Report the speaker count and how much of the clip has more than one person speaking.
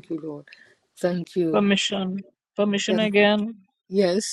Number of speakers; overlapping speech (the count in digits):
2, about 9%